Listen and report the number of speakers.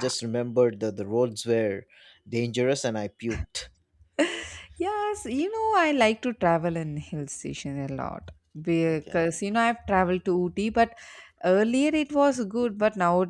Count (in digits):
2